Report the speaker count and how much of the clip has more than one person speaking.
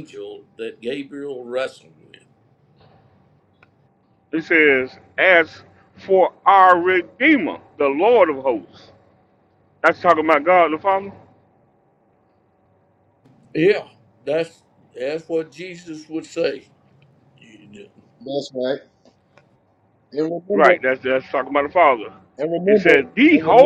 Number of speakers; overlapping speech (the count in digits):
3, about 5%